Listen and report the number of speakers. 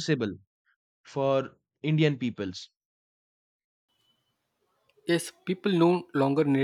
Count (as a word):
two